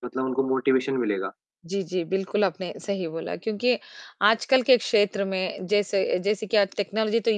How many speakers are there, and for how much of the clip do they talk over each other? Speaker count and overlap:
two, no overlap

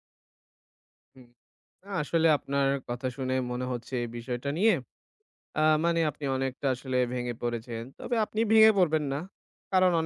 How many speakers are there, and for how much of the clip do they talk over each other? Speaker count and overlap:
one, no overlap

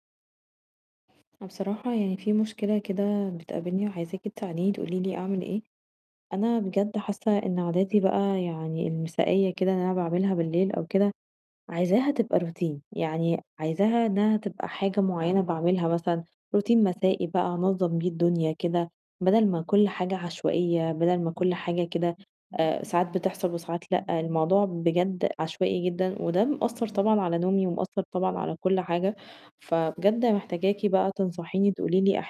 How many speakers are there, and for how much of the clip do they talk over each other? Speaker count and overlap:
one, no overlap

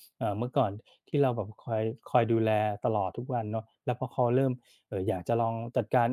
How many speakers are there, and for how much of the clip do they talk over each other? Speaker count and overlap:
one, no overlap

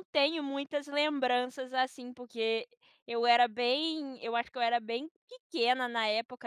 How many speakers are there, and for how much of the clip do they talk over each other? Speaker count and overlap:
one, no overlap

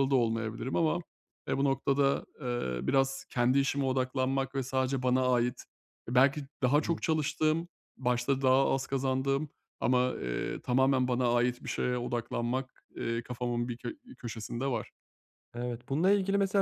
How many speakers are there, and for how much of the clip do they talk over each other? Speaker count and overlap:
two, about 1%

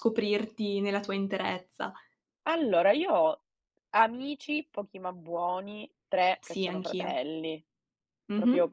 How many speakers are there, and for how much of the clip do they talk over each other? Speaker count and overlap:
two, about 11%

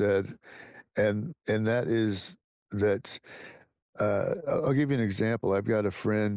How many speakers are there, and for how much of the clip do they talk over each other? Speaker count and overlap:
one, no overlap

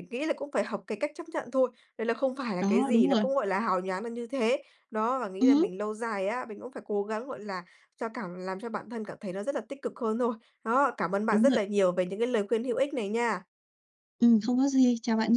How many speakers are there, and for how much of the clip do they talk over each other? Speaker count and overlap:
two, about 8%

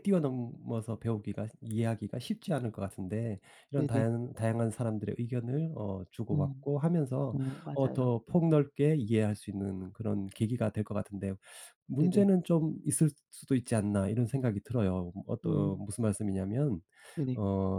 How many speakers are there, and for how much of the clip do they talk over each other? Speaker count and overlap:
two, about 8%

